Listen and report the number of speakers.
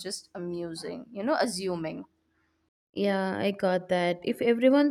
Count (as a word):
two